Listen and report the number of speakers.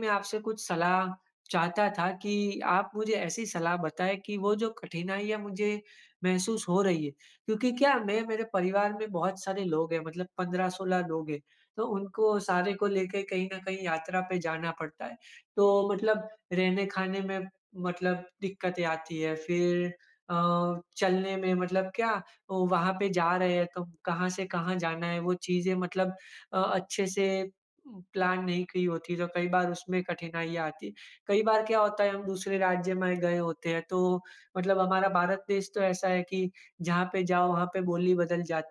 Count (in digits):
1